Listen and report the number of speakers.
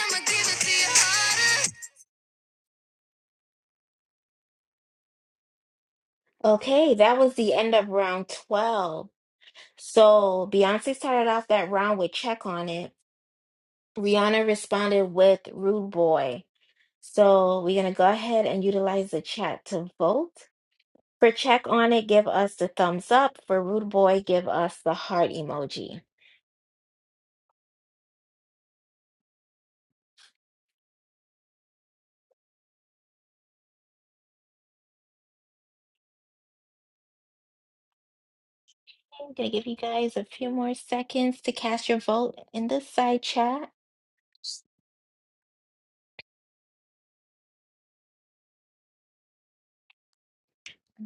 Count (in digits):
2